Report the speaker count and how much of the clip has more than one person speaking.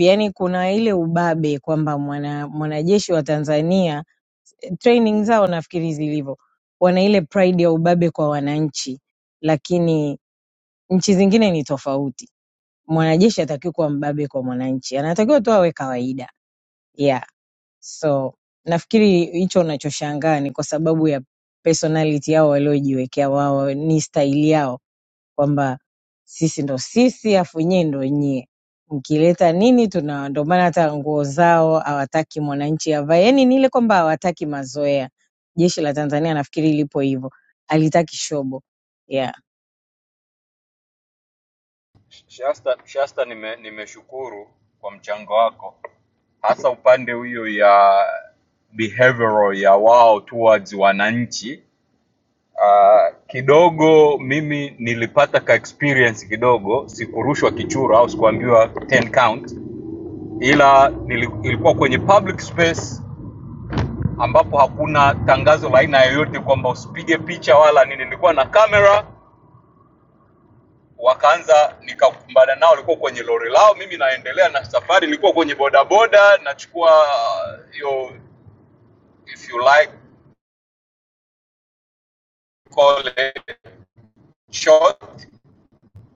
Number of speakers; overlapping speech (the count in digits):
2, no overlap